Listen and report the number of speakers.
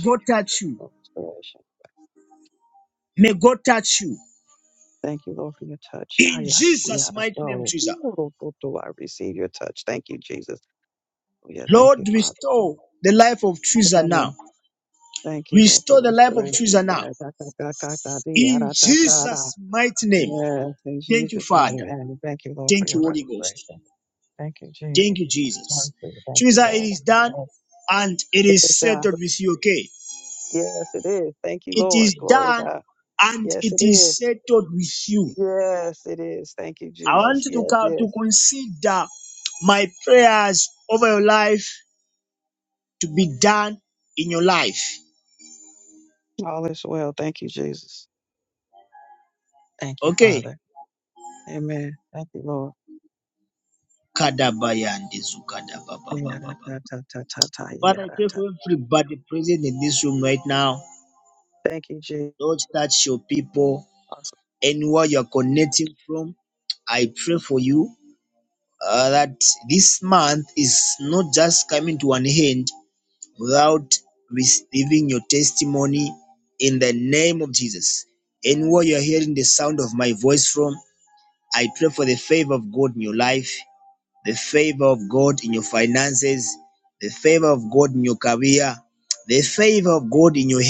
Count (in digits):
2